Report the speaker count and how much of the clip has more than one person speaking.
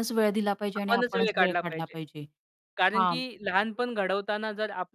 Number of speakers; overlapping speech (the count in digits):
2, about 30%